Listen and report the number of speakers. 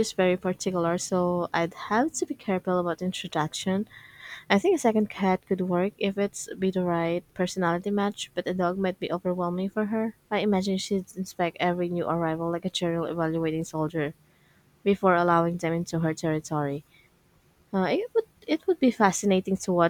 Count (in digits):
1